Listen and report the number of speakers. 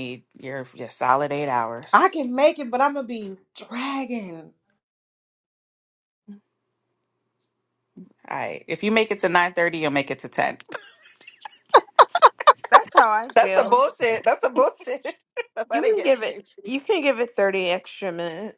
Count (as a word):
three